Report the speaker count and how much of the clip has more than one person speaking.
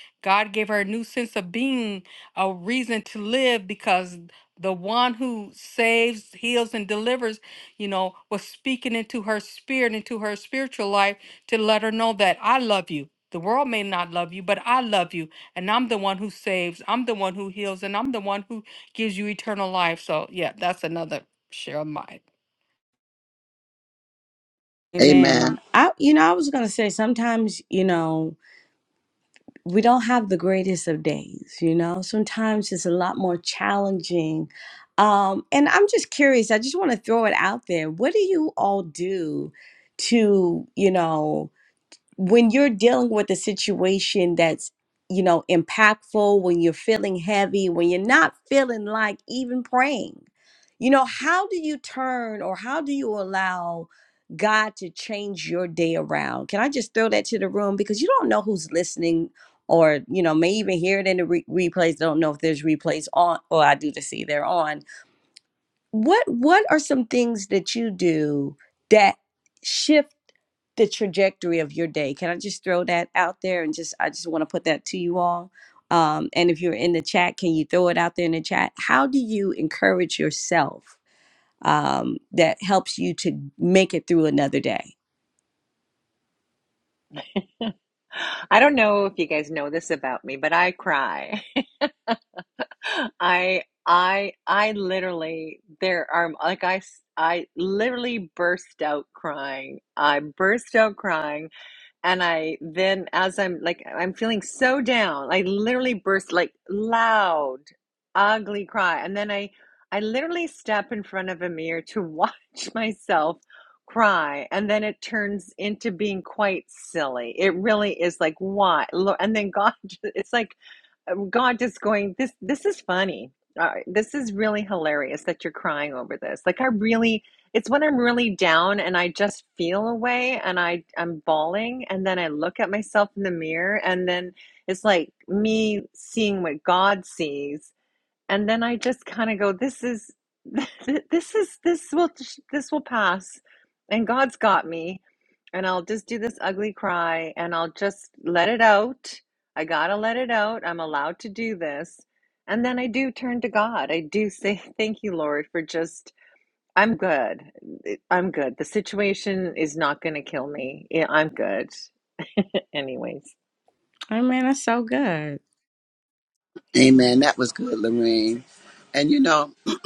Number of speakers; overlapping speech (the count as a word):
four, under 1%